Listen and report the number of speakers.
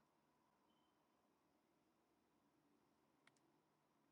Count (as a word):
zero